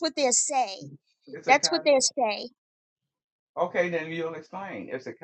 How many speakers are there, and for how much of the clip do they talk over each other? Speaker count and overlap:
2, about 11%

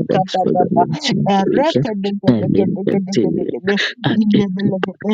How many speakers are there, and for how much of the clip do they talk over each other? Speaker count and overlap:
2, about 61%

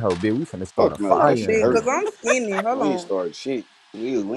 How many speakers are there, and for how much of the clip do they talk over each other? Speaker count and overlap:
3, about 33%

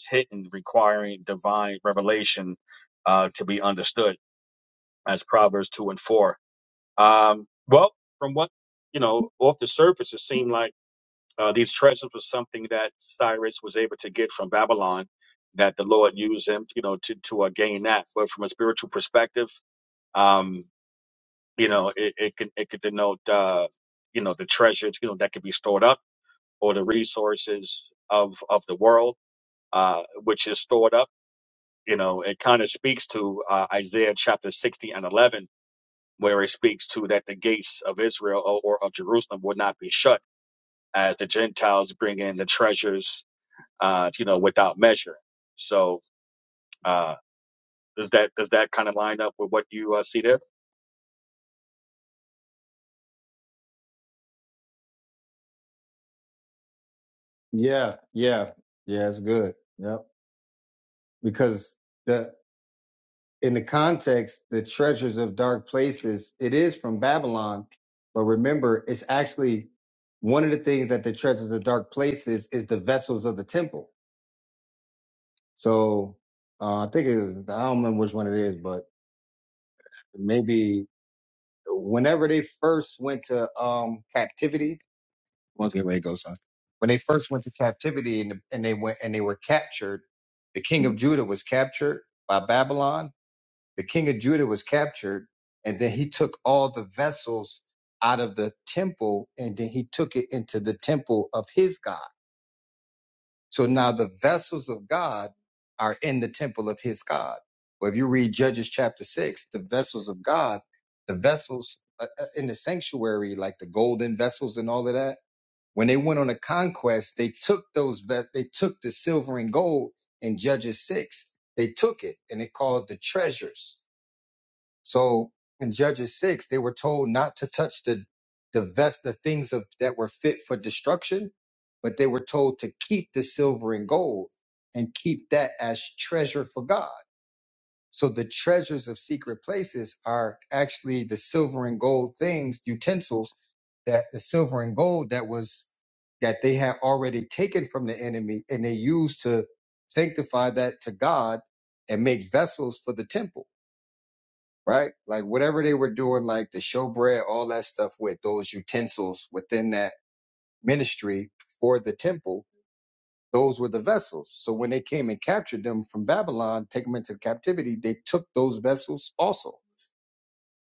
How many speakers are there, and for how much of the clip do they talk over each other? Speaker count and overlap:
2, no overlap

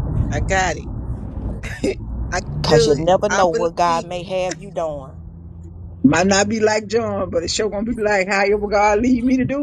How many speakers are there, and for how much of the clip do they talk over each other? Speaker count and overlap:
3, about 15%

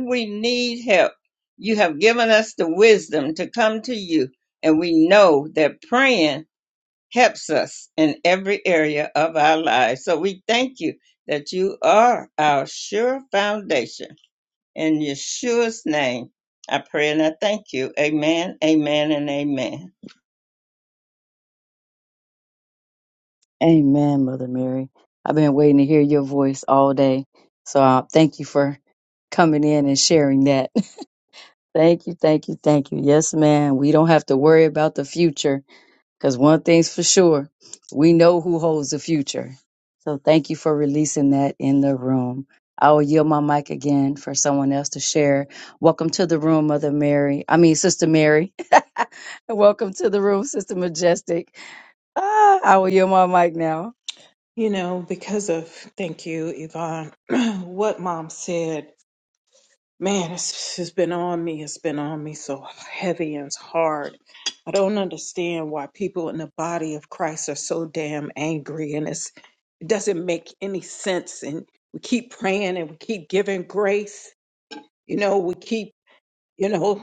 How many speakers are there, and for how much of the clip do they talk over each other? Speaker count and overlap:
3, no overlap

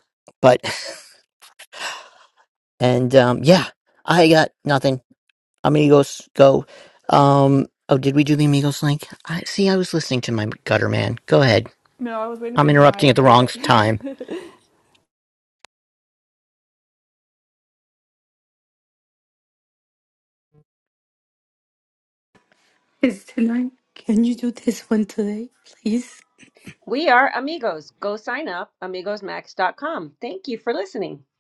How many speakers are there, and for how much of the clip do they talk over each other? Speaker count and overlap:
4, about 3%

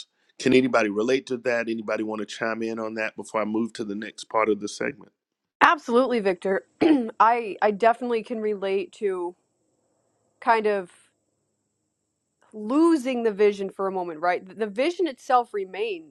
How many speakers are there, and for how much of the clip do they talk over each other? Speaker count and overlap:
2, no overlap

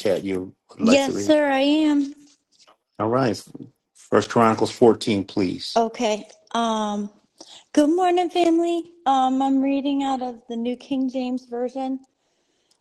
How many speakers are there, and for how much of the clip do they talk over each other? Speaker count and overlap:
2, about 4%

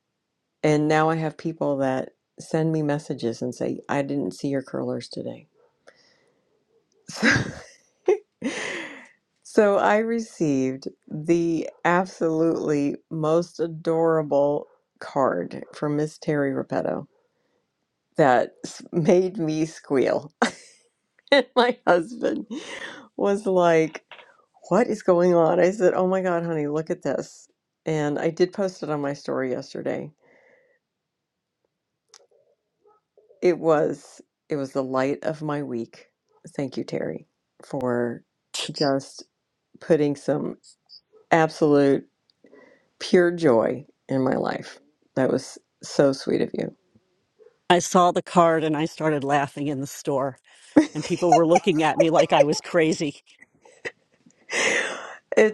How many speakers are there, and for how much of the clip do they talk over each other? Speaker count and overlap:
2, no overlap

